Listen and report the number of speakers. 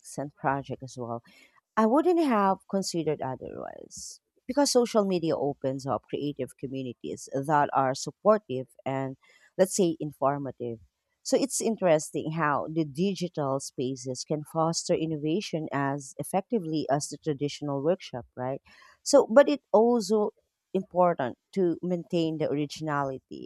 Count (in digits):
1